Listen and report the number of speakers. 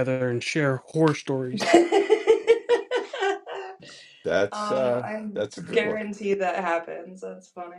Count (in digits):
3